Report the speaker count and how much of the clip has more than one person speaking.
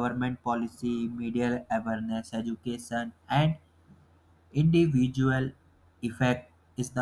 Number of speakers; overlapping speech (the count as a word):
one, no overlap